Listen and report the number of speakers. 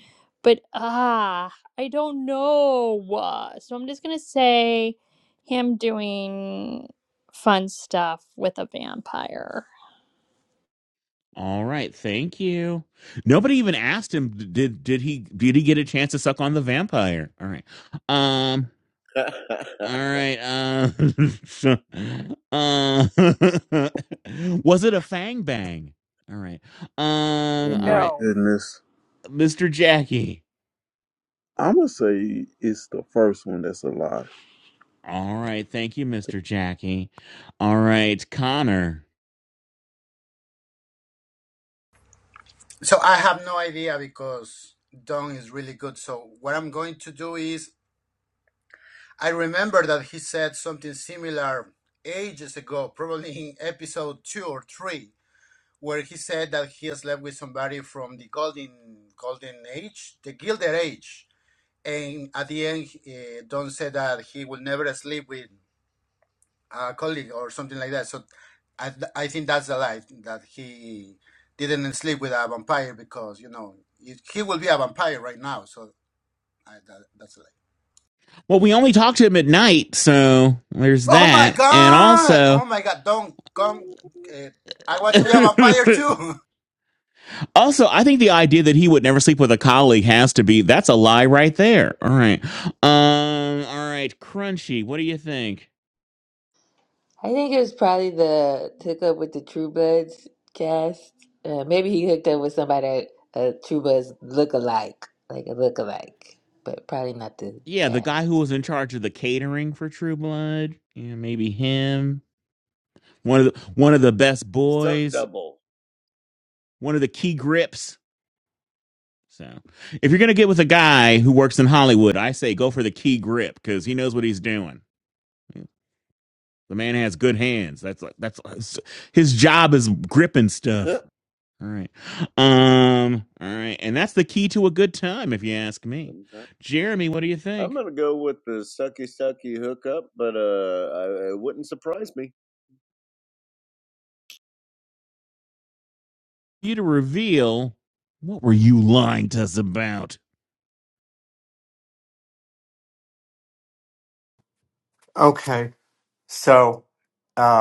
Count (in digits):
7